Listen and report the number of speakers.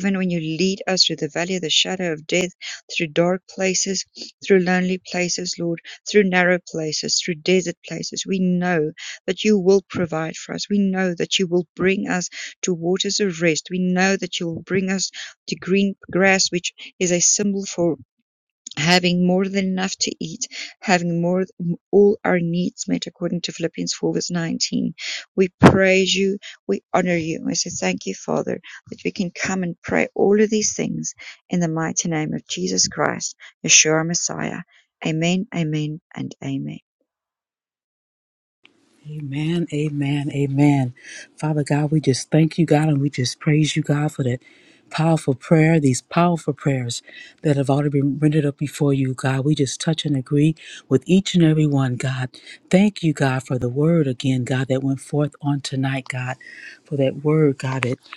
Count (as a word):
two